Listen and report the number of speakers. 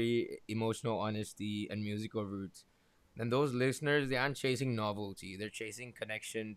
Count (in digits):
1